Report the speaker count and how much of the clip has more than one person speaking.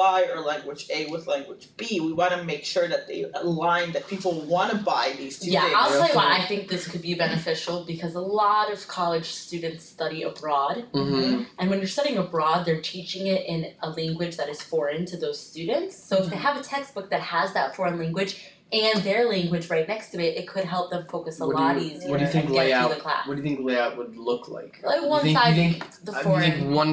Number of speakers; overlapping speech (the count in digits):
3, about 19%